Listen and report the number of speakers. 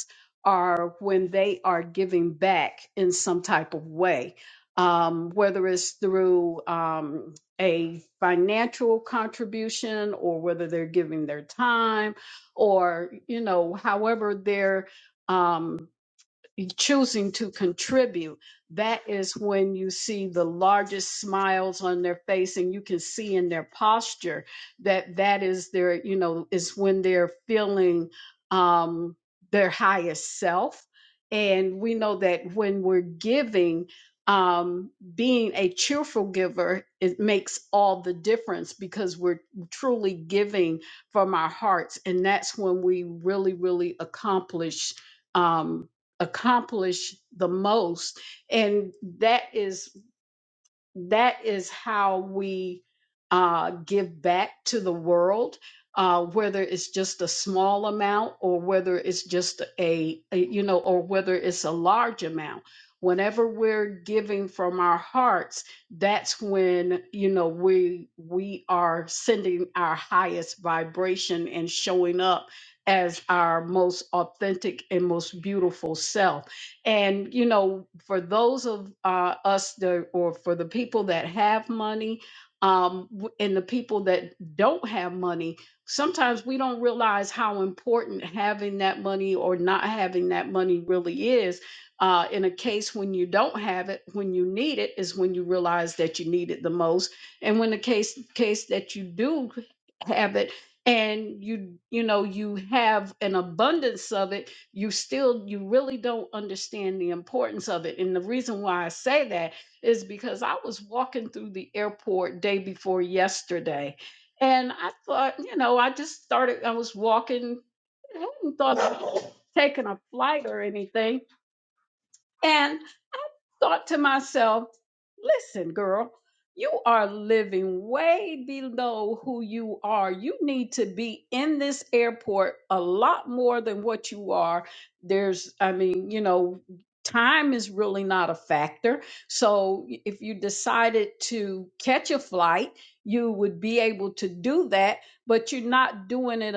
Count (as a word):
one